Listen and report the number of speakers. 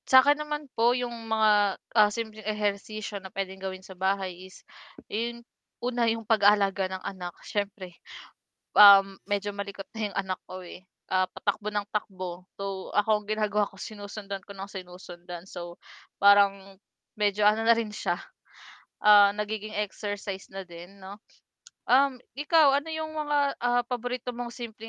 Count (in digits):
1